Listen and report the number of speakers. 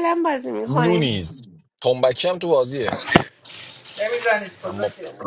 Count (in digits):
3